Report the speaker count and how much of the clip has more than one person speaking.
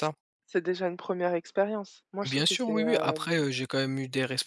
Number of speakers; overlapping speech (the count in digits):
2, about 24%